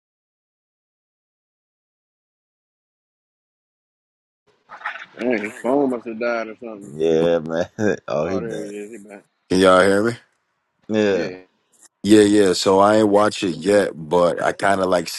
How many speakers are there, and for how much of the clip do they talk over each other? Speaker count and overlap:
three, about 5%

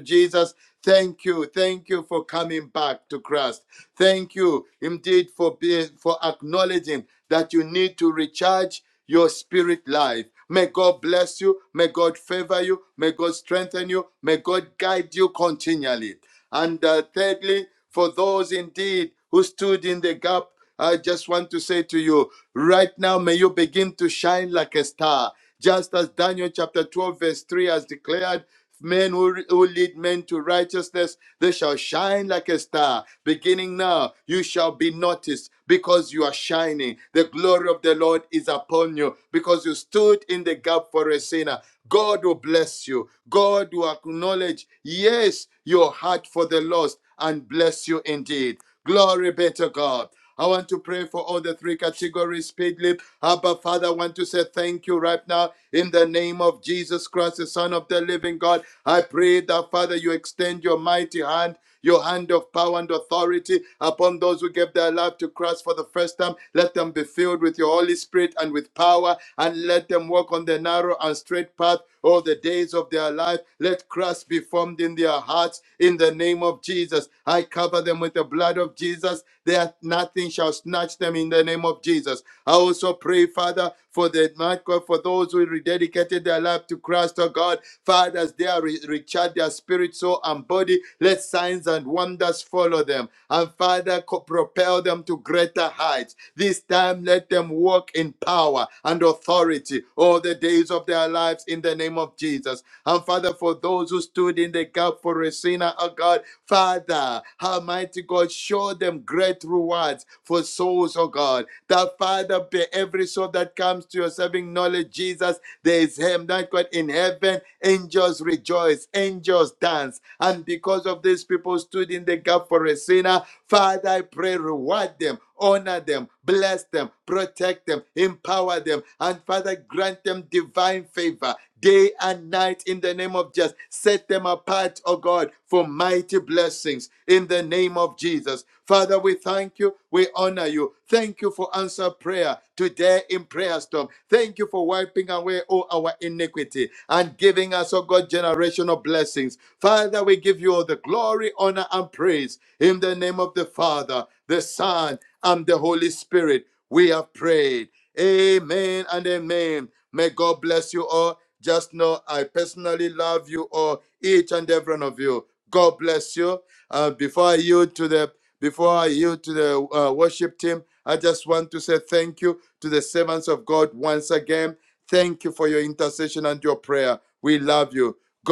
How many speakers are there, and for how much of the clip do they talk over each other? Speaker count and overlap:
one, no overlap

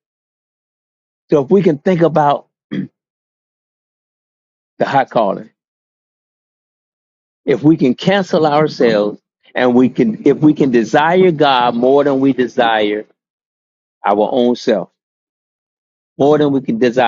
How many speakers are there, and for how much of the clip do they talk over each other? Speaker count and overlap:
one, no overlap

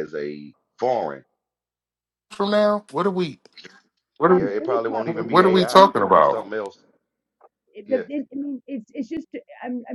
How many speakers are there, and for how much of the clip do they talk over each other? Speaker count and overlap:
three, about 24%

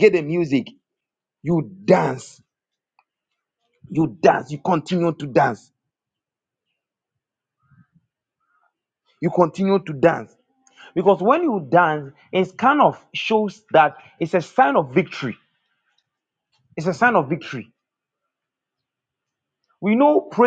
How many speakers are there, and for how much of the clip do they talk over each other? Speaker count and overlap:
one, no overlap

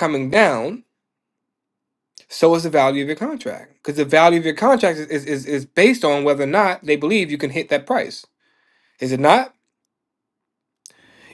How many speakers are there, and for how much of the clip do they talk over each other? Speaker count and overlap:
one, no overlap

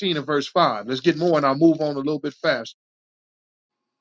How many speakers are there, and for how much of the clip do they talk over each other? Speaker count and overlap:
one, no overlap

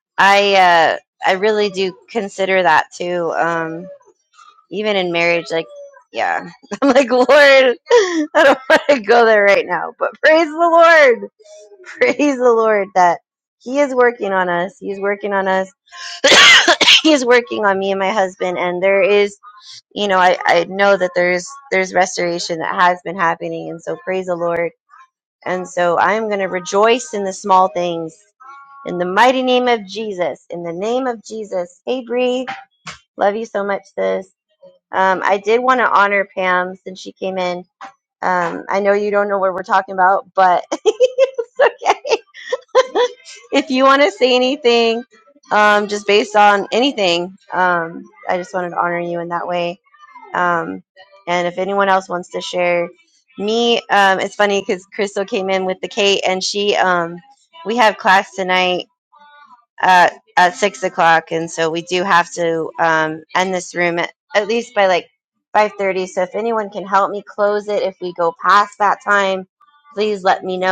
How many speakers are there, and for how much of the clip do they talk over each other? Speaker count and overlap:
one, no overlap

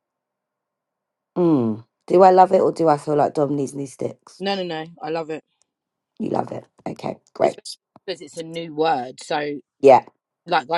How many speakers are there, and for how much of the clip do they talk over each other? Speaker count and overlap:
two, about 1%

